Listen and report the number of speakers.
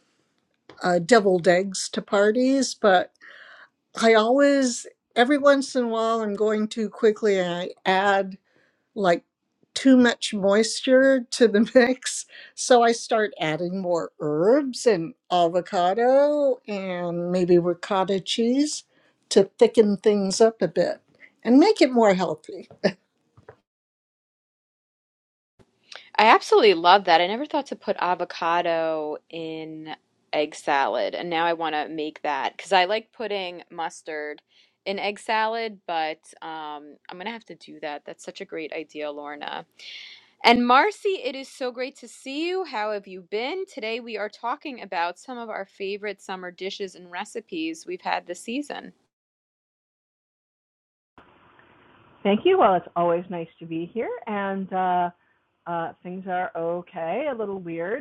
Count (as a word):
three